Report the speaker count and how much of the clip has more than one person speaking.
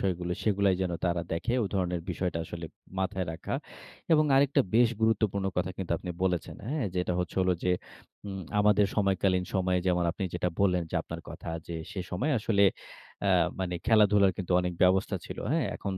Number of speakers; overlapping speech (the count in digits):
1, no overlap